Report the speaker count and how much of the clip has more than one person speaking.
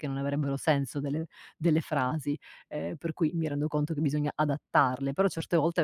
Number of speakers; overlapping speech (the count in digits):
1, no overlap